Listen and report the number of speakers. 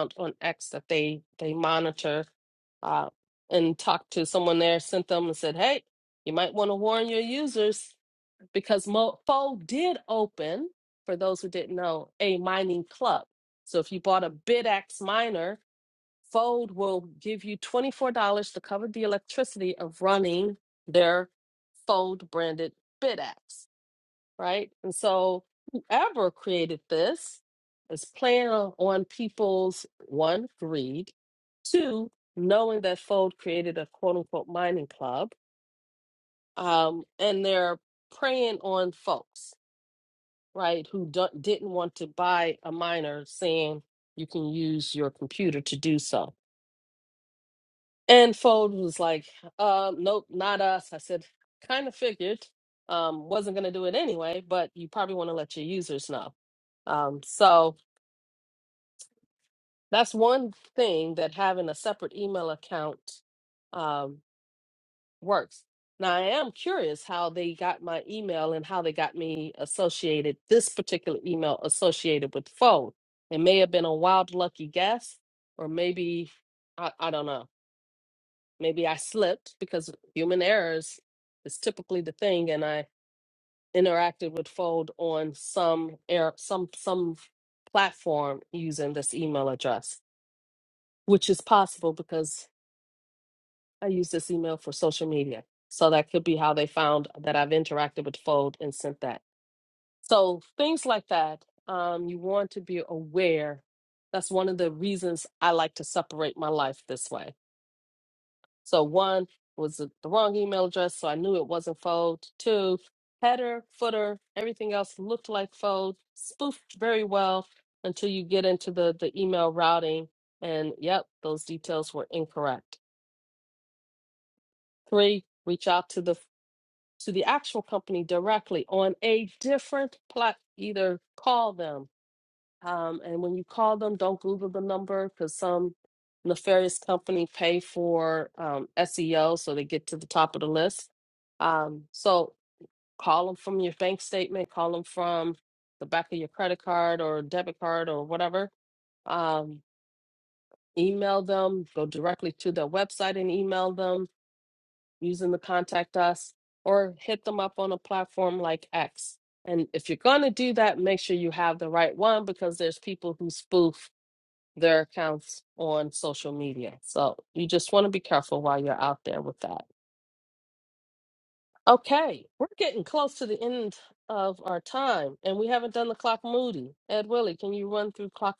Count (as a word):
one